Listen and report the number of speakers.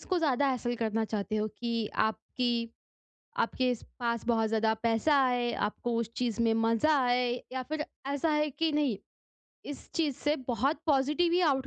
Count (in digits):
1